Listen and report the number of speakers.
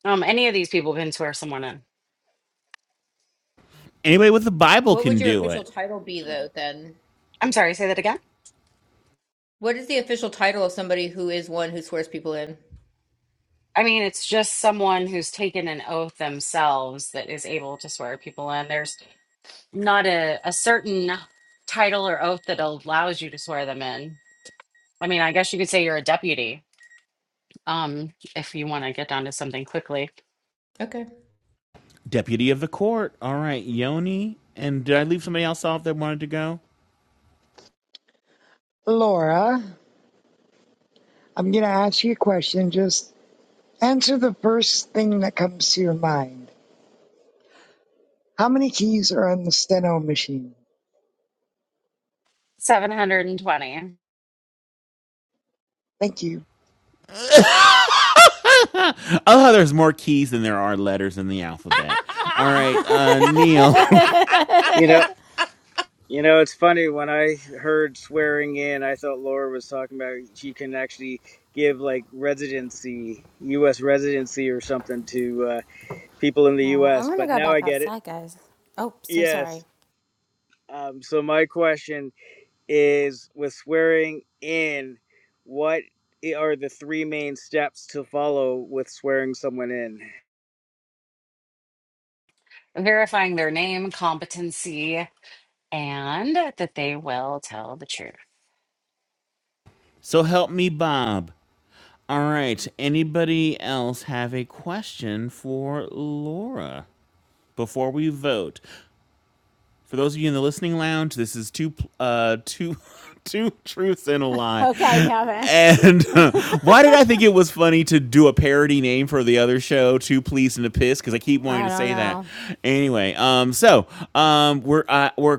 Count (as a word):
six